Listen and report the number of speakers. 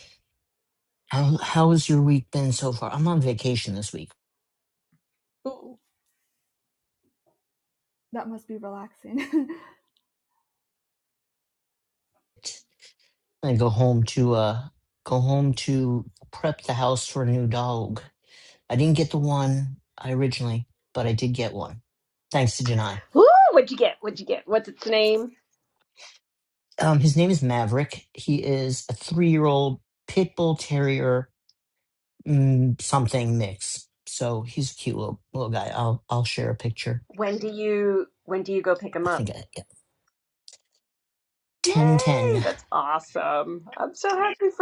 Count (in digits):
3